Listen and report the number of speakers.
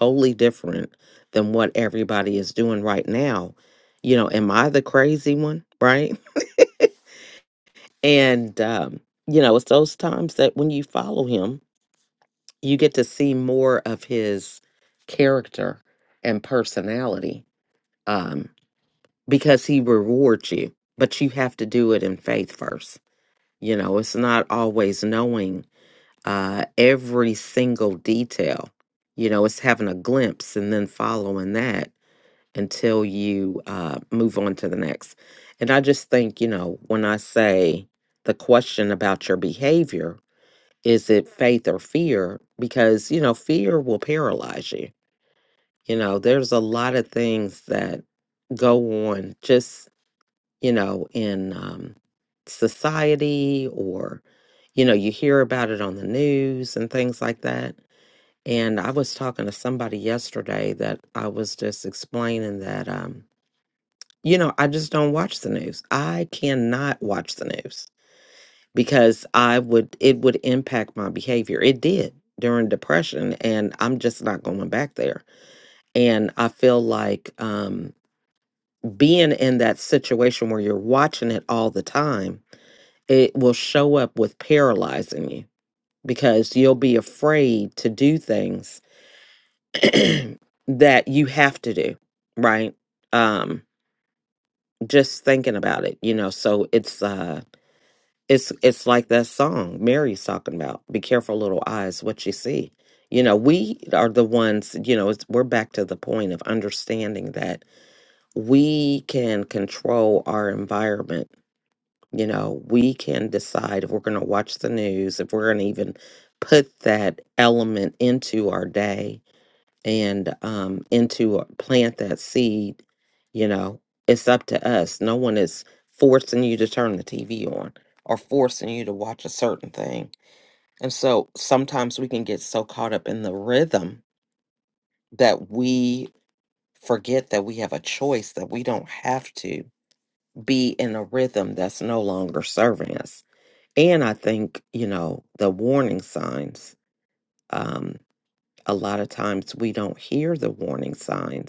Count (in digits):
1